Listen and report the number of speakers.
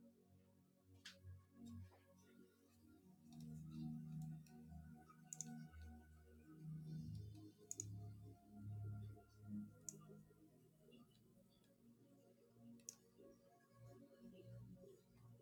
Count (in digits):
0